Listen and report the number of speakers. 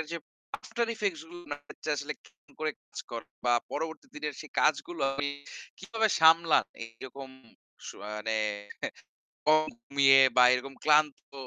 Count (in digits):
1